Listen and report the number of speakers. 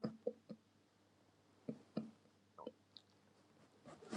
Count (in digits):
0